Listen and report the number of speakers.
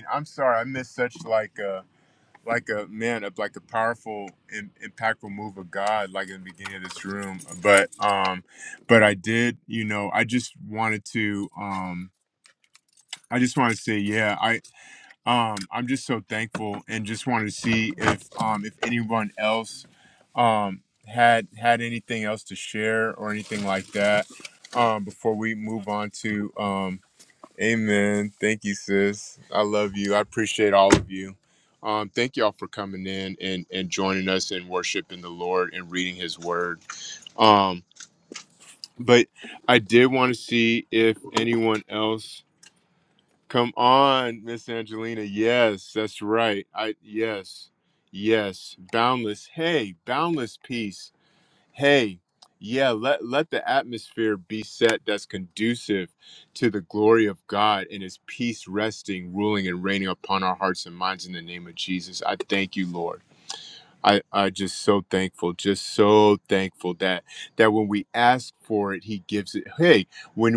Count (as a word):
one